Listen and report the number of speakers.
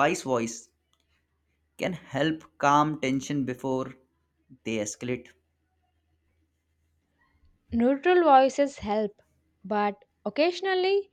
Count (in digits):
2